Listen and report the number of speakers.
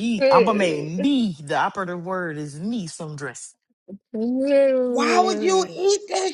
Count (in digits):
3